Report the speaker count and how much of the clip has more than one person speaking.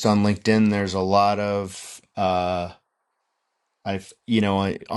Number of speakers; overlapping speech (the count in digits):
1, no overlap